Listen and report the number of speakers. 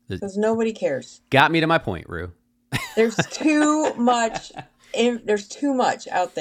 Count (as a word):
two